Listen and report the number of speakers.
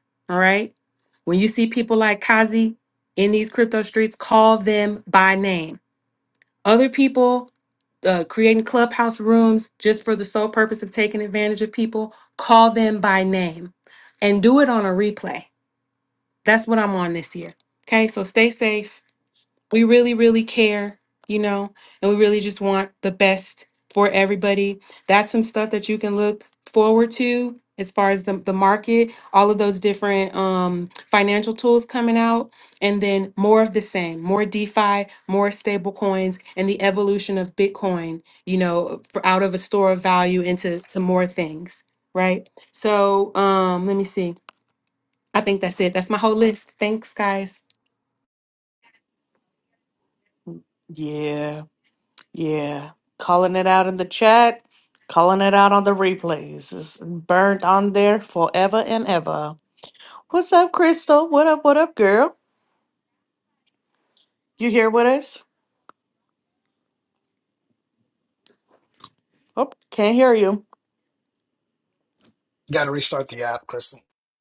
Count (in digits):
3